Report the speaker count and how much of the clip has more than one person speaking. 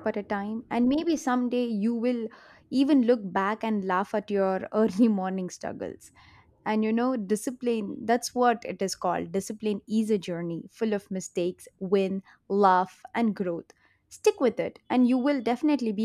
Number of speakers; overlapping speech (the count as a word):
one, no overlap